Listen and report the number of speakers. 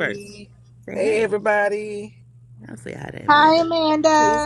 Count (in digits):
3